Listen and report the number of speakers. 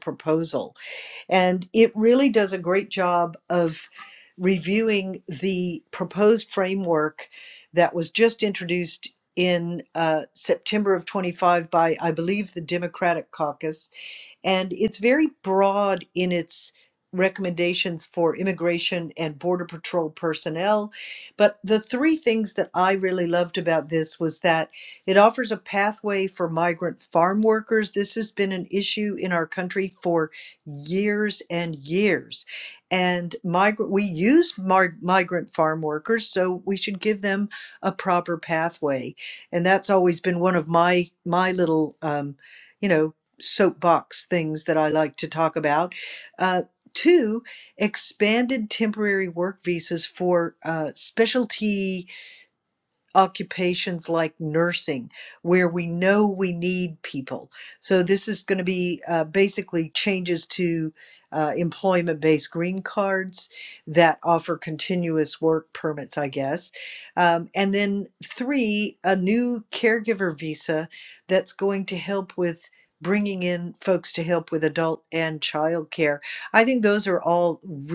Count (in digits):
1